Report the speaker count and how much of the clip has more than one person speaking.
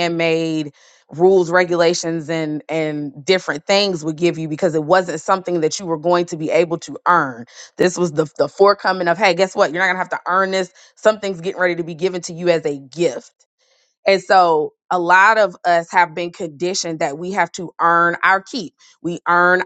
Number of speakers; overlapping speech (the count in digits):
1, no overlap